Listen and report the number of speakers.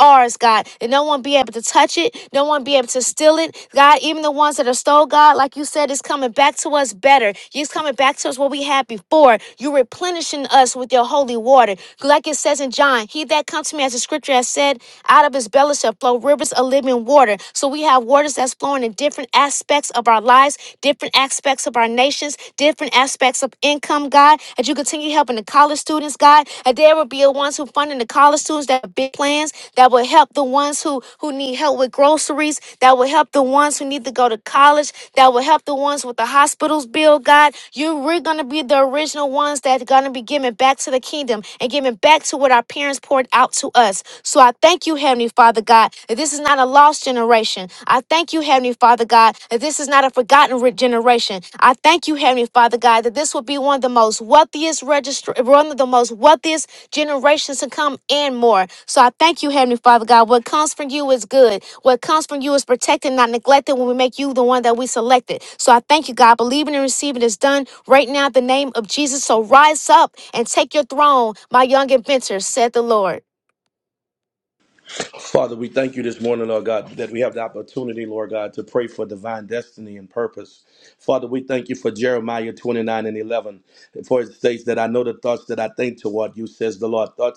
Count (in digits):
2